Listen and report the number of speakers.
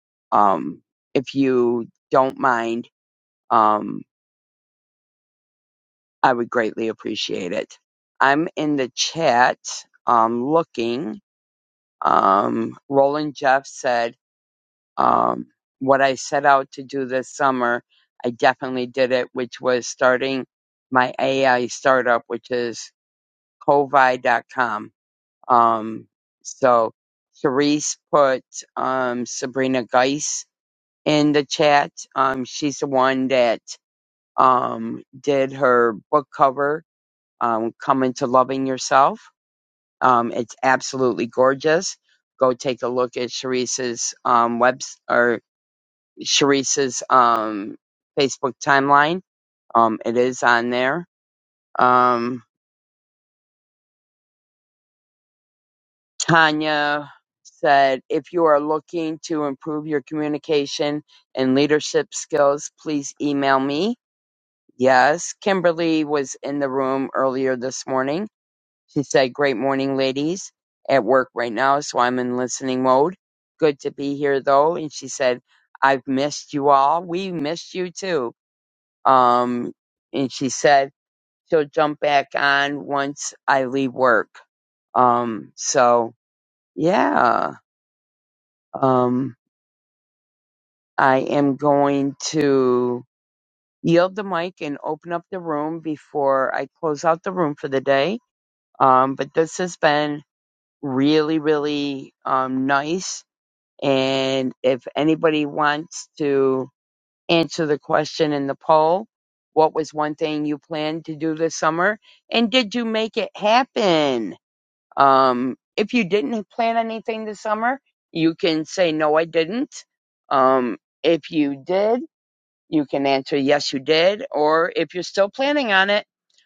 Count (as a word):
one